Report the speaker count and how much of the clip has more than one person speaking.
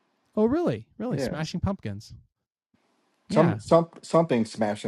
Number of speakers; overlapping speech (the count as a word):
two, about 11%